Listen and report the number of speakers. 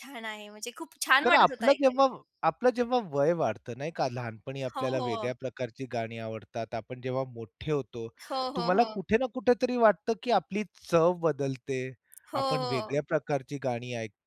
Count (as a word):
two